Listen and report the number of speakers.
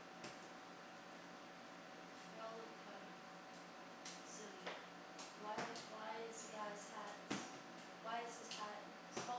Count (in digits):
1